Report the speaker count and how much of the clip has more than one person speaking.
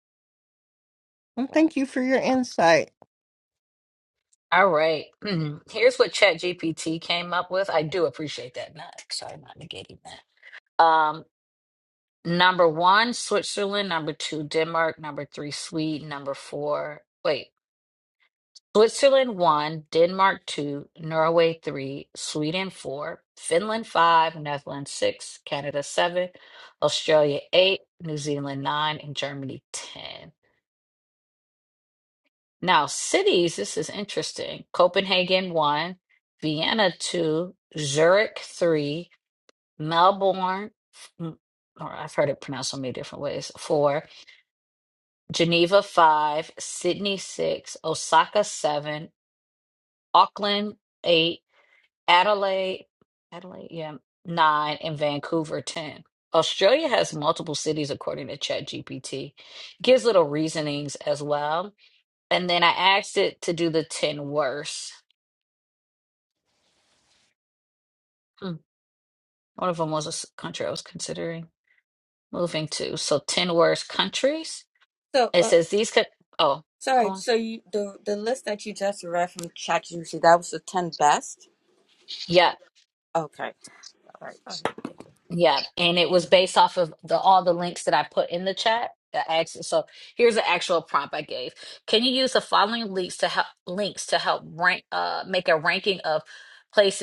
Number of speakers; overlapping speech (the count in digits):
3, under 1%